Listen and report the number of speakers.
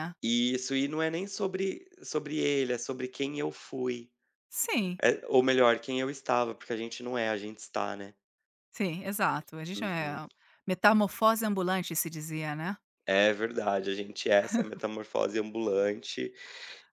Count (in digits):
2